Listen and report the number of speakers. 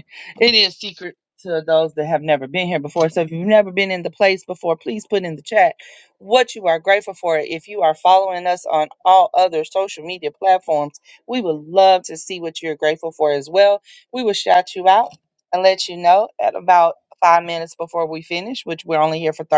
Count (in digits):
1